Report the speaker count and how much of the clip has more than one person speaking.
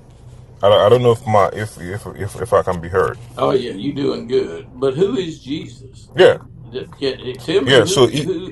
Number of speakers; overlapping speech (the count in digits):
2, about 7%